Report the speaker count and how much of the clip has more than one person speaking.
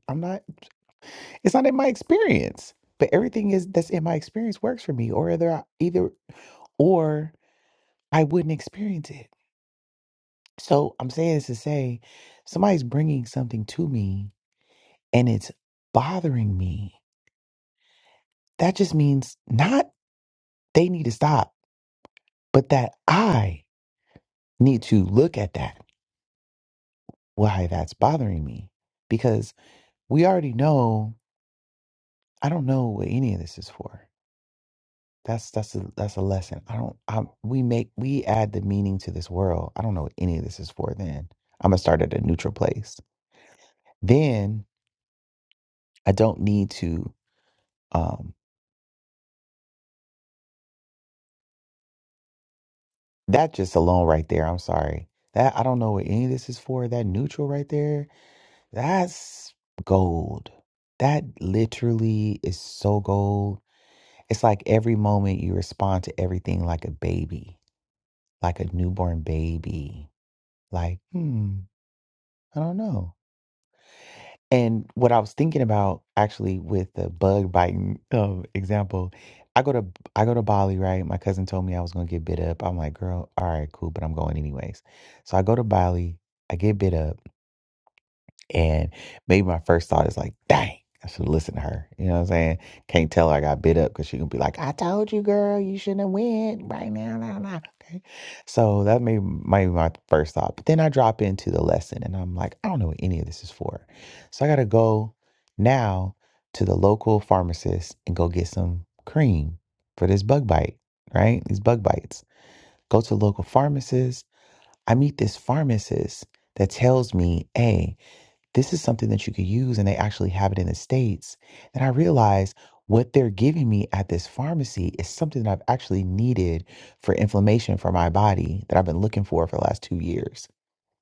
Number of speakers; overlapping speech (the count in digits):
1, no overlap